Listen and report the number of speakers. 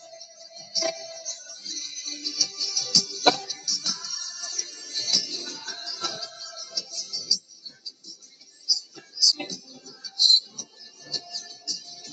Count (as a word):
zero